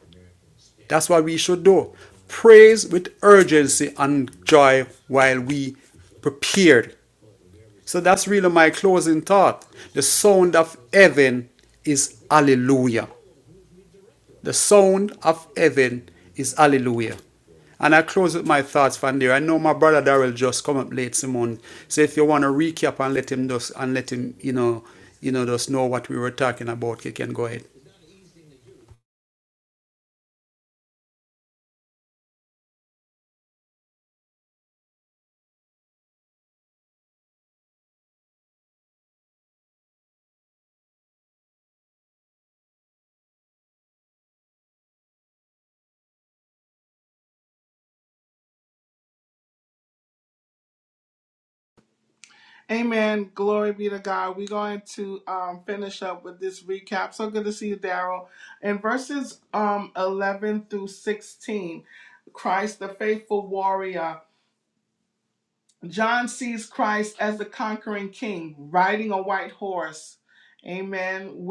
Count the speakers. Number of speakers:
two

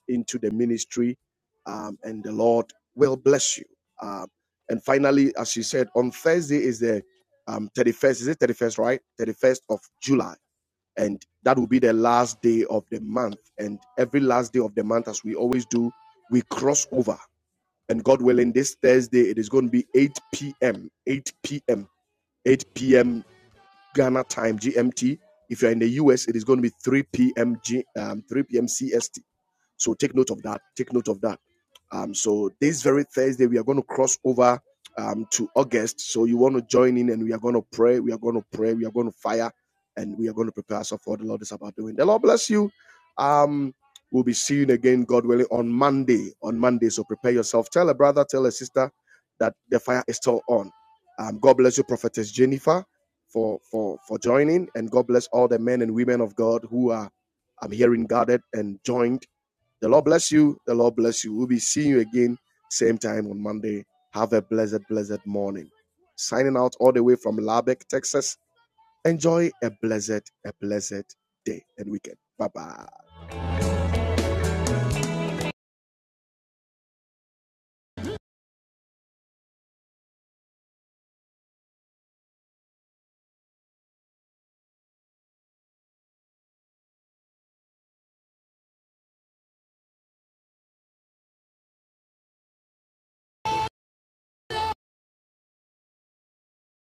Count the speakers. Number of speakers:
one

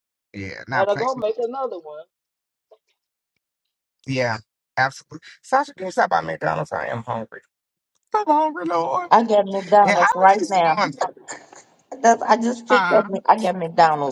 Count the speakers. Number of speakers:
three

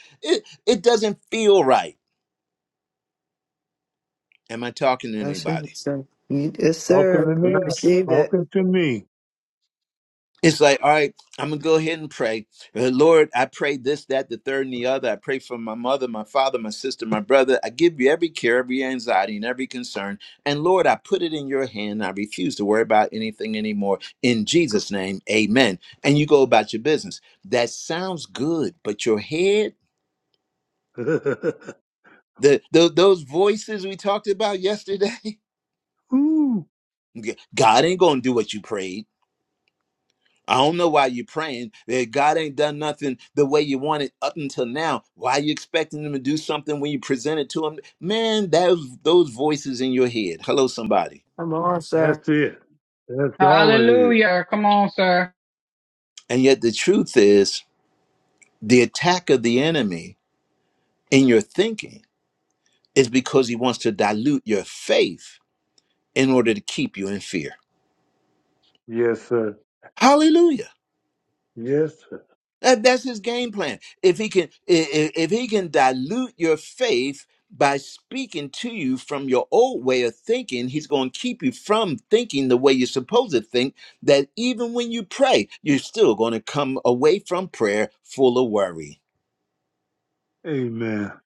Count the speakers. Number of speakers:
four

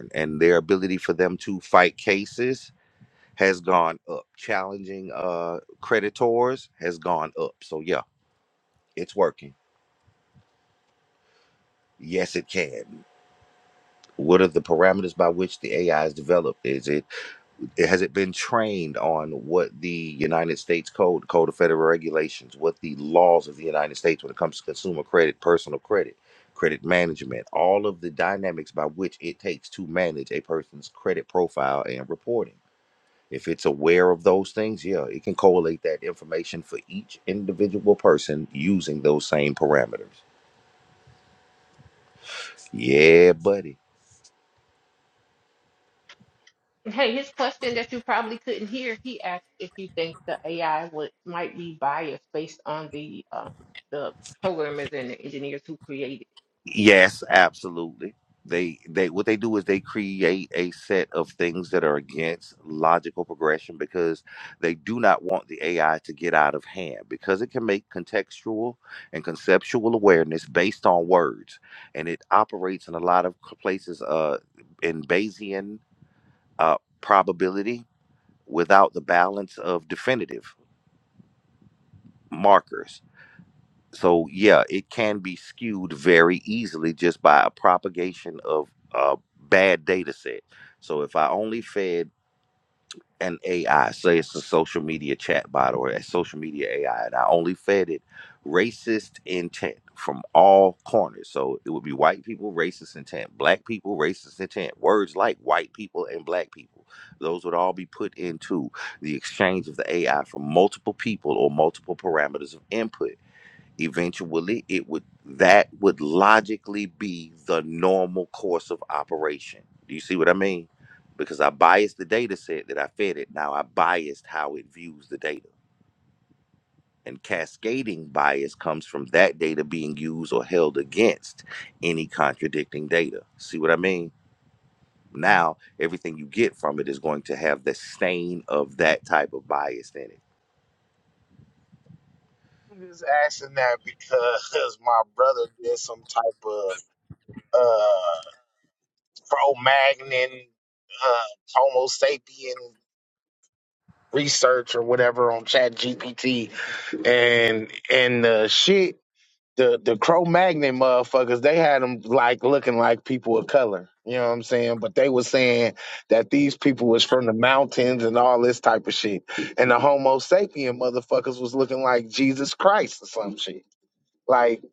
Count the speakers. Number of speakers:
three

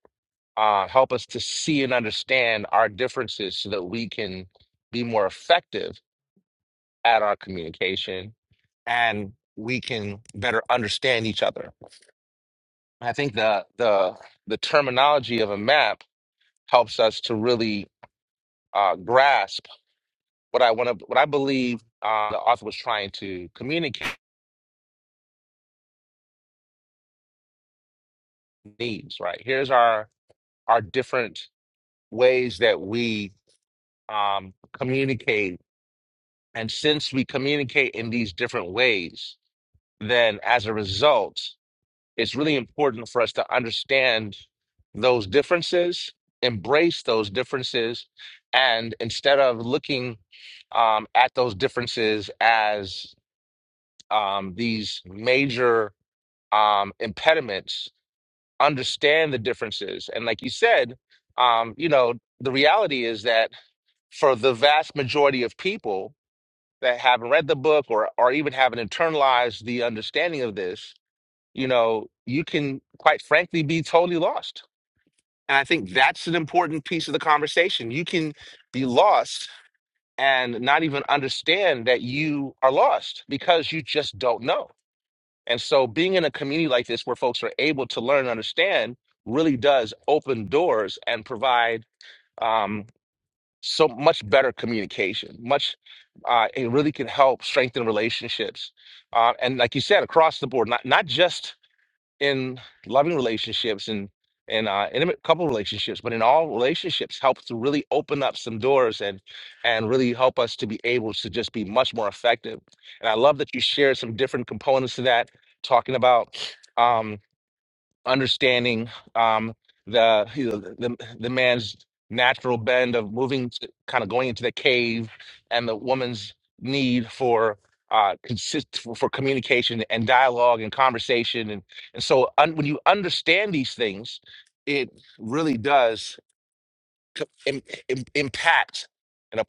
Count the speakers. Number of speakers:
one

